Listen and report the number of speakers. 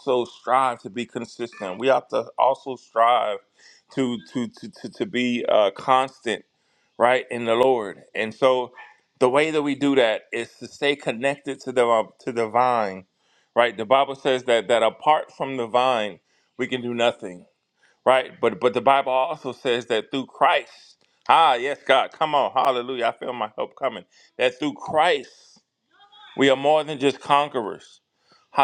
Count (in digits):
1